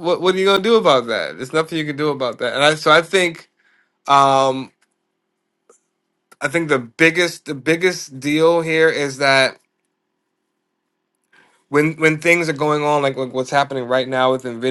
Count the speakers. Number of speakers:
1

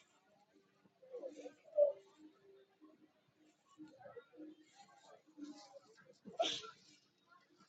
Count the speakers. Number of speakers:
0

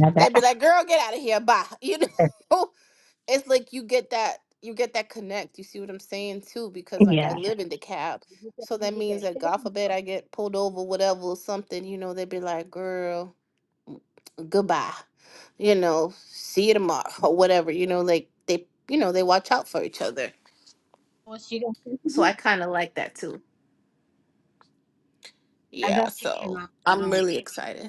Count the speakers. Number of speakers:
2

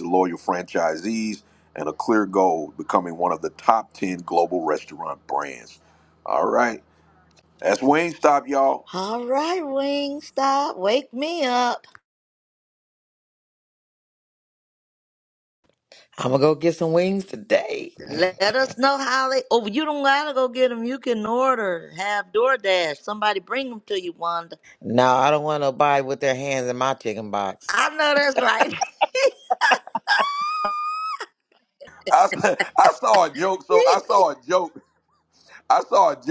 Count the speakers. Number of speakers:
3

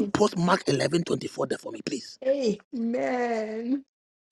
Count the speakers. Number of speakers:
2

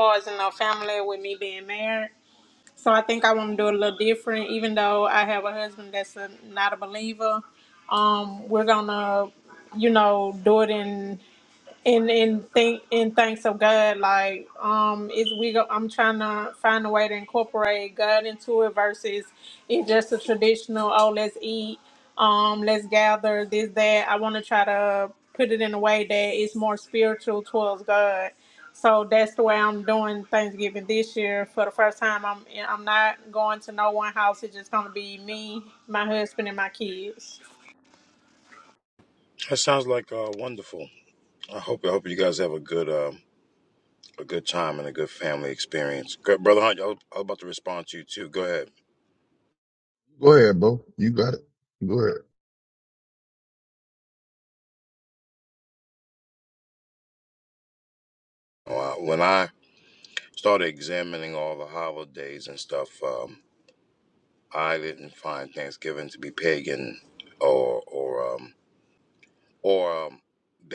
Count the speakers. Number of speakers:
3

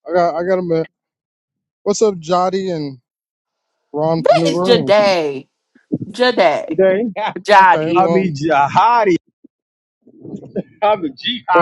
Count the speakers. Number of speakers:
3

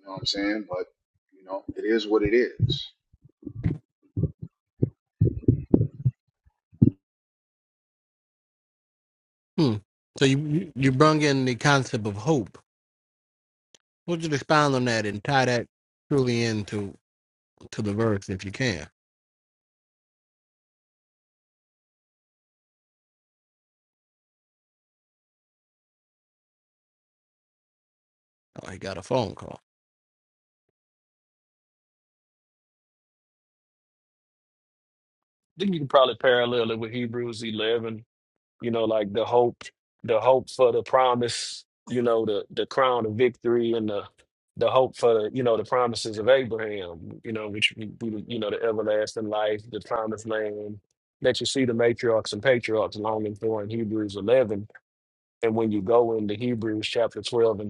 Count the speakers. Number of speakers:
3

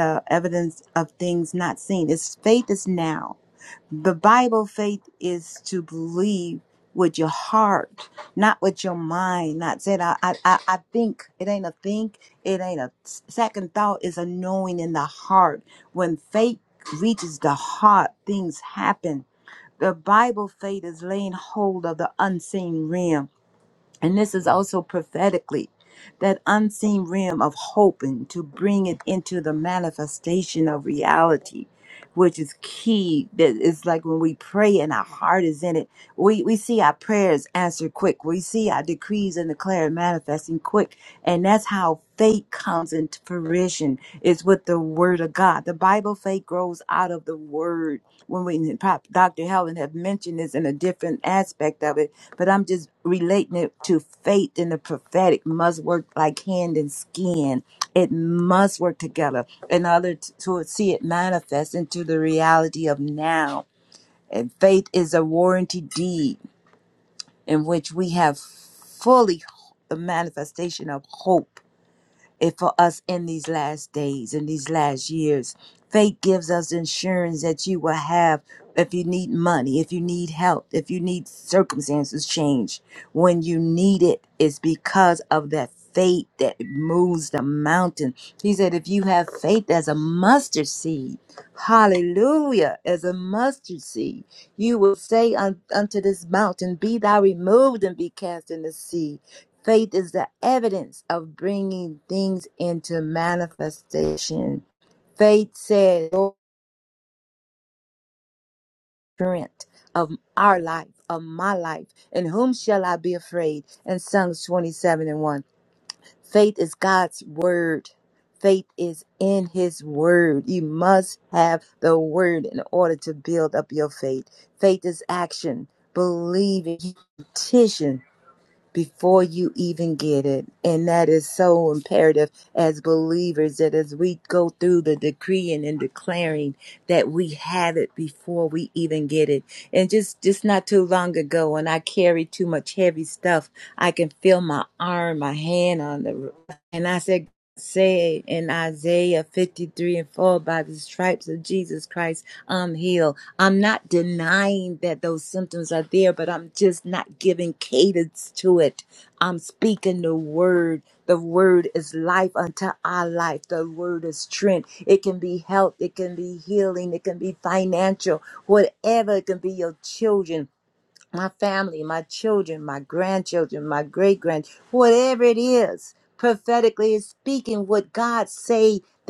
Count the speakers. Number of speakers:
1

